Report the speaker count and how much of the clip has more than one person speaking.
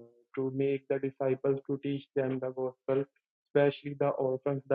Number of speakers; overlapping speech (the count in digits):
1, no overlap